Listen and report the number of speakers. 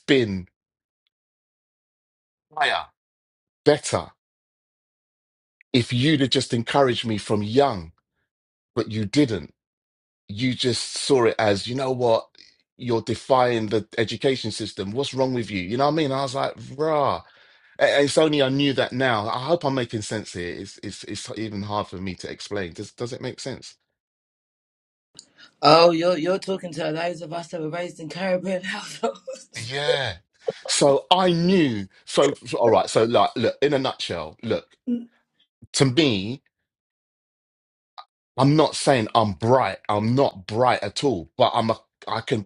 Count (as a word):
two